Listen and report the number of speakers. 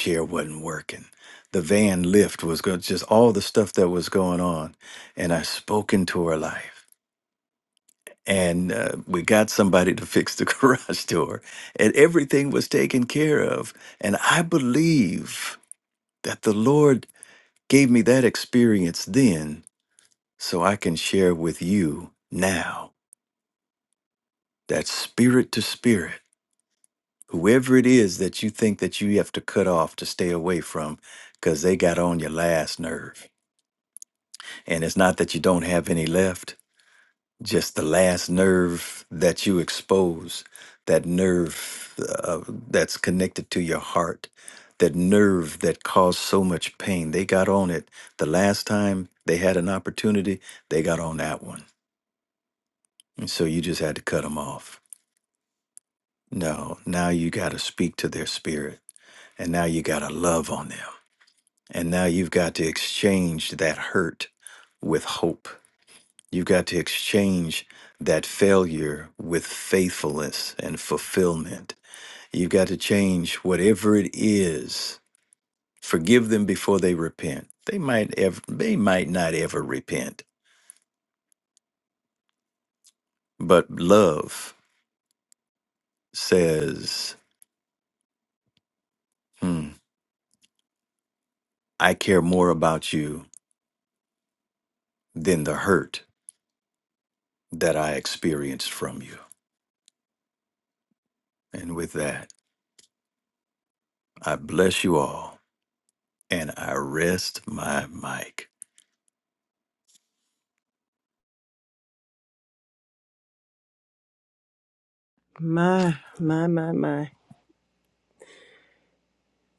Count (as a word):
two